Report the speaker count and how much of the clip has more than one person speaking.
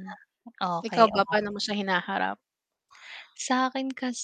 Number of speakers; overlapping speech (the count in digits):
2, about 12%